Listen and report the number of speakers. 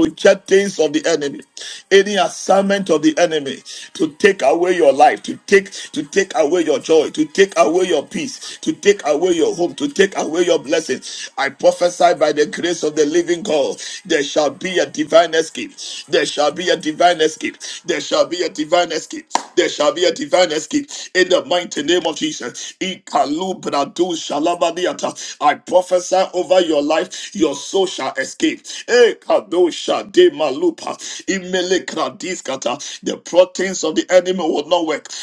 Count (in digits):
1